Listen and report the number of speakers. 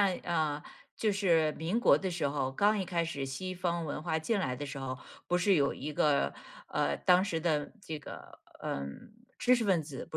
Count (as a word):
one